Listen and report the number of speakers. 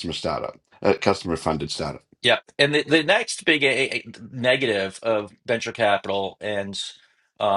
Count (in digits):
2